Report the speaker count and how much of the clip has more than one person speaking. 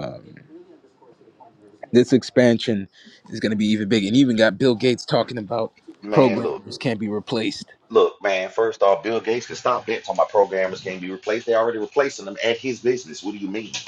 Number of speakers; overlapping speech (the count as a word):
two, about 3%